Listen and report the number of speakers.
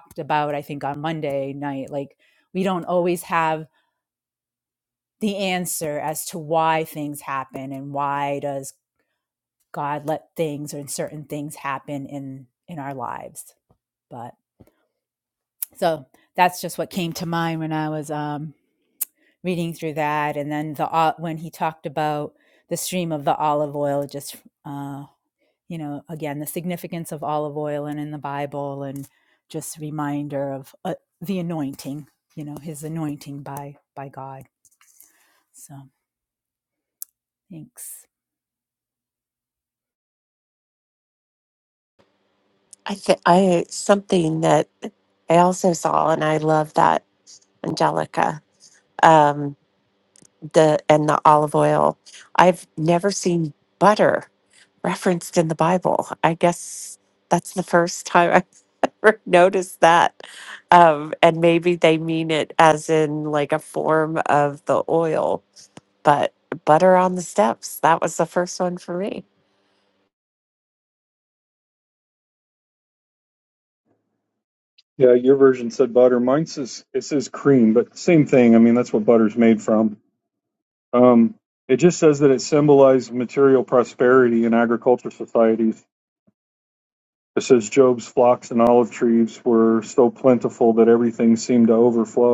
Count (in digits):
3